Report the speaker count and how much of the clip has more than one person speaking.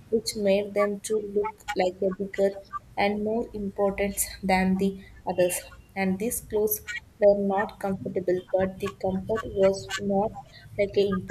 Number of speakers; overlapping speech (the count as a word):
one, no overlap